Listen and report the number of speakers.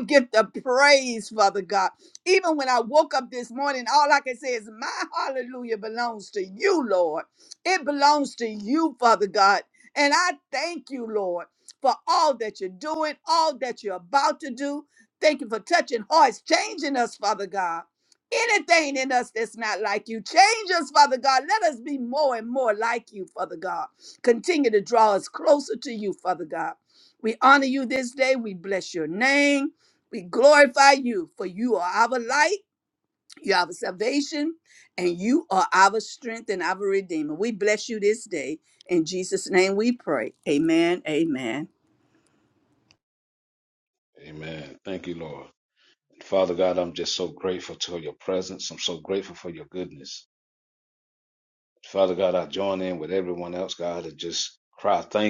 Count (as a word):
two